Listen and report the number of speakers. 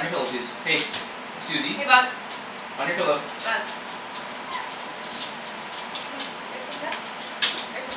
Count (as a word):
two